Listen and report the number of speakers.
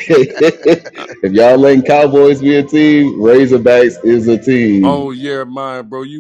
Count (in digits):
2